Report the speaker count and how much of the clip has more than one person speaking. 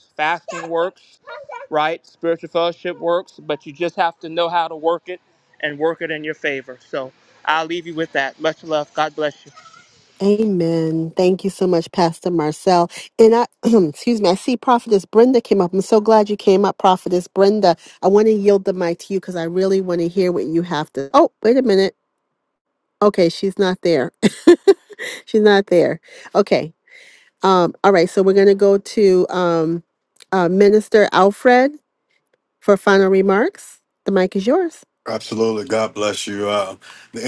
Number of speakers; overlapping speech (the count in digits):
3, no overlap